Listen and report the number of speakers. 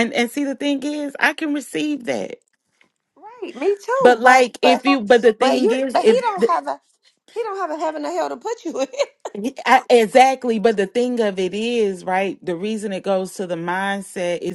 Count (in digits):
2